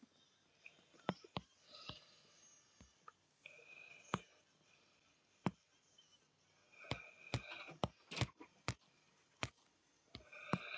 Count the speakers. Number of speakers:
0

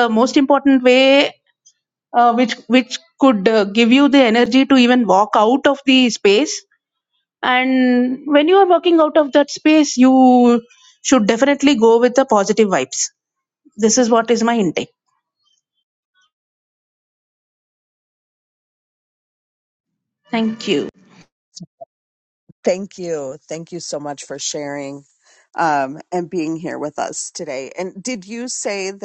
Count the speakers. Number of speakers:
2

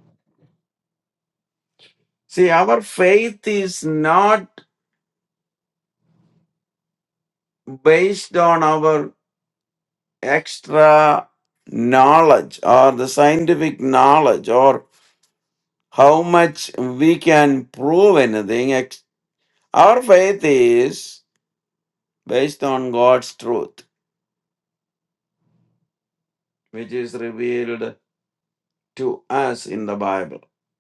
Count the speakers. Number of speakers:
1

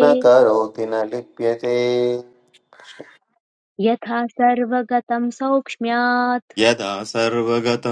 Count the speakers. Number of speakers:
3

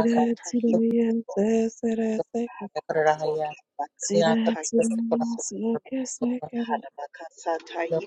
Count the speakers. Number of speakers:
3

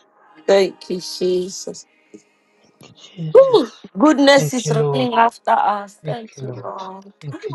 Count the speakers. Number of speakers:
2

